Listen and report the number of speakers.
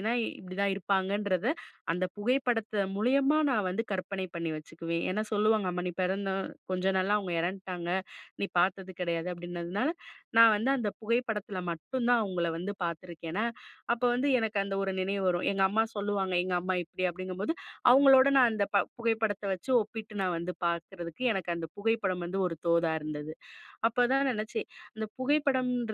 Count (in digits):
1